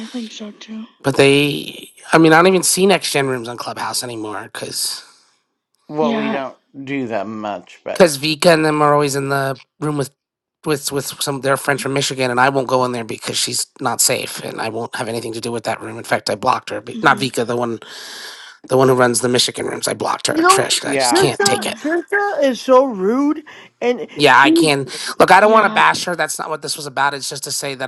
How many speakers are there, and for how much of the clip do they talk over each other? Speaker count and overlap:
4, about 12%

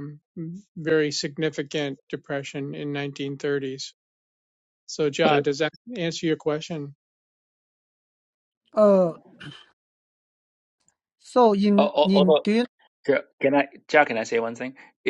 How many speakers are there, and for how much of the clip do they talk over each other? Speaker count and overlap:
3, about 5%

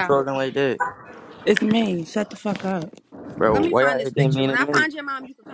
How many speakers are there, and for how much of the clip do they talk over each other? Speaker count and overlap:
3, about 29%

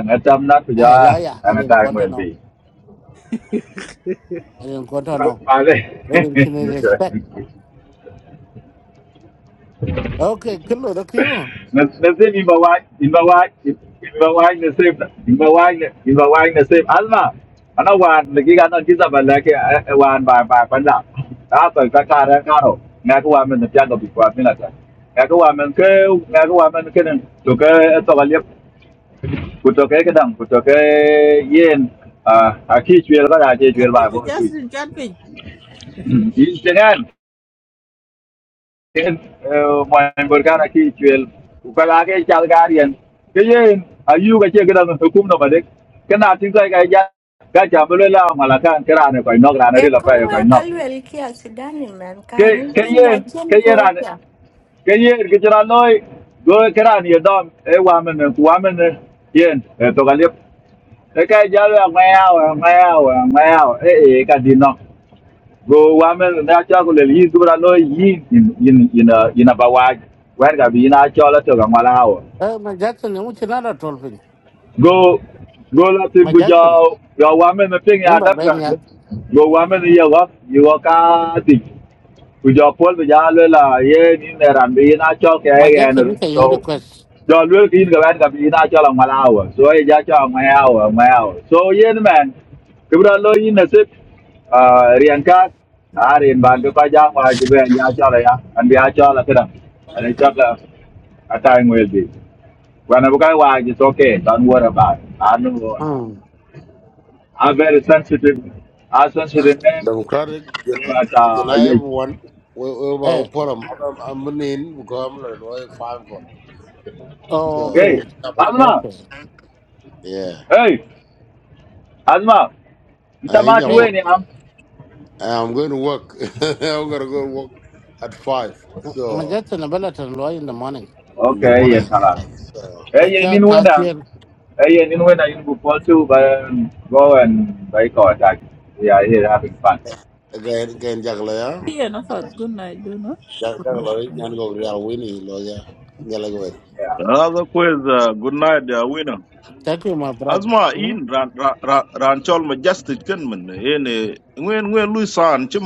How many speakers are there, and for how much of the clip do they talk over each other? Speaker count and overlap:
6, about 7%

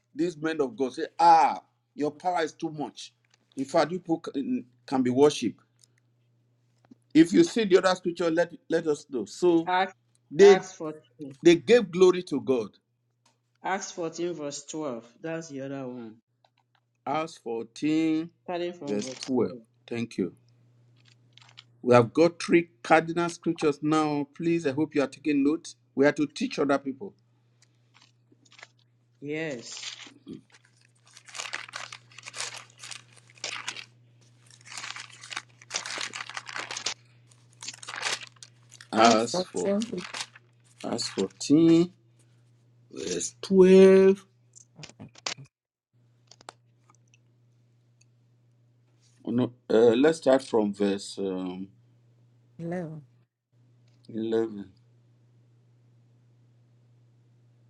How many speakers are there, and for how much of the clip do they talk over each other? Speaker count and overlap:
3, about 3%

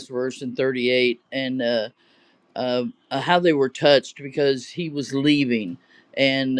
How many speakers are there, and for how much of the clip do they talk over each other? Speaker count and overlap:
1, no overlap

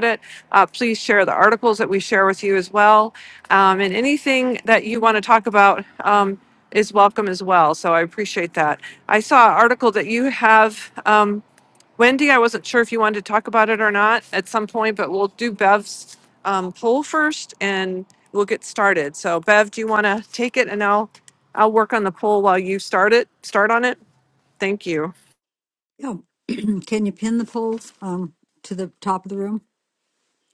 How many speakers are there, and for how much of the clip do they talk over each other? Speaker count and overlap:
2, no overlap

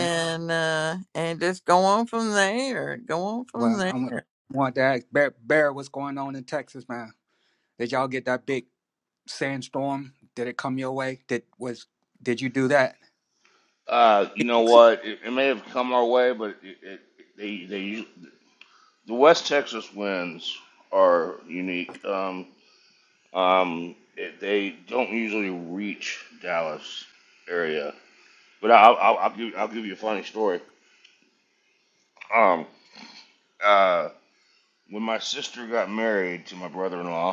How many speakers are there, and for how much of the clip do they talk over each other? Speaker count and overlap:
3, about 2%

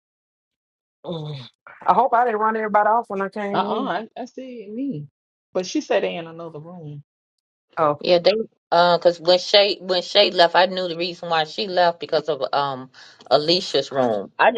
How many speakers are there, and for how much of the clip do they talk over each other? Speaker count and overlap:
3, about 2%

